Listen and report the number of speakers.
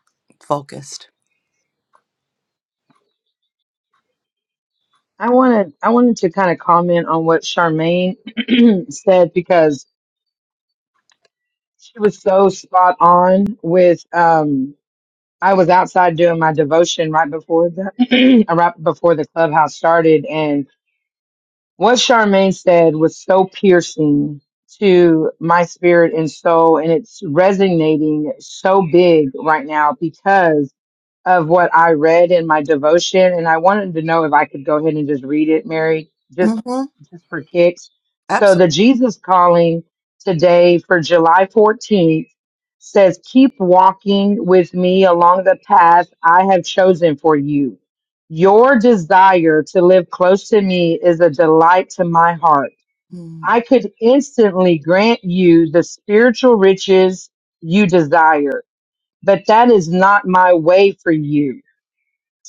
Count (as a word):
two